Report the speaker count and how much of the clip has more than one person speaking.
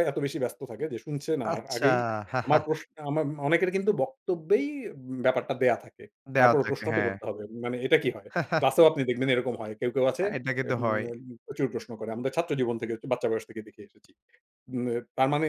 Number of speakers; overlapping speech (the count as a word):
two, about 11%